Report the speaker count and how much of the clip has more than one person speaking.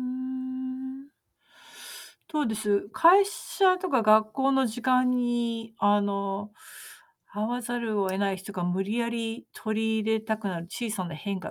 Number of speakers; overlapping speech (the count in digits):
1, no overlap